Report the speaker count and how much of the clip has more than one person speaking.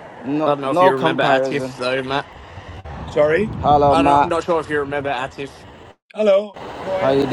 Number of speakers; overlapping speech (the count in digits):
3, about 28%